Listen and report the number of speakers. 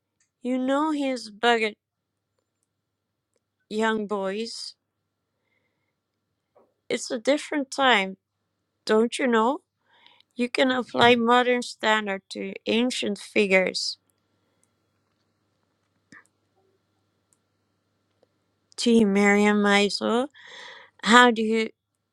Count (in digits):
1